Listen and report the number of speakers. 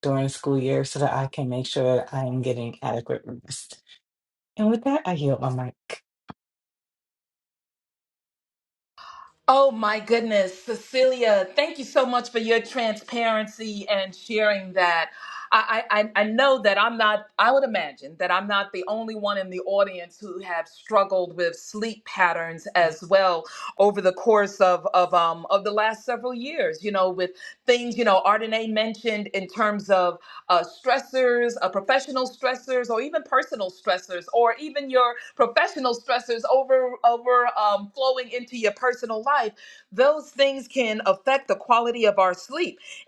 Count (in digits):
2